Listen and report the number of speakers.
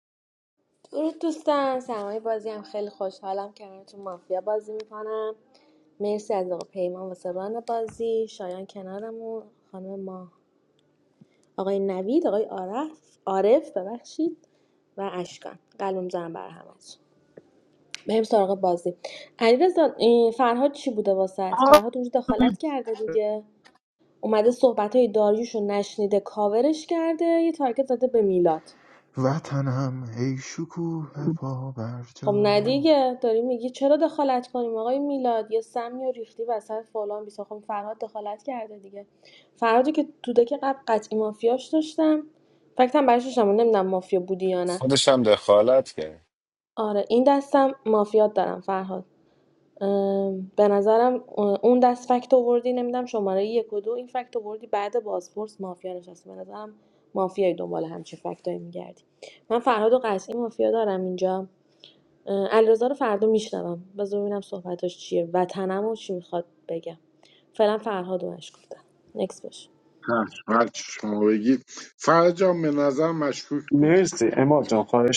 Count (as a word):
five